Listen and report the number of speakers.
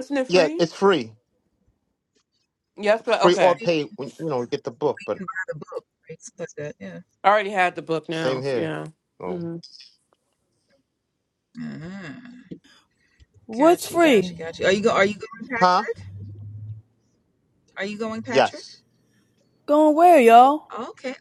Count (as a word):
four